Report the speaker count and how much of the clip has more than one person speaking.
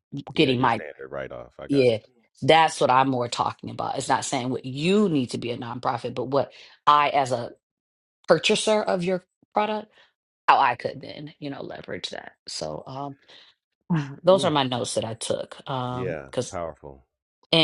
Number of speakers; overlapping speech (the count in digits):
2, about 9%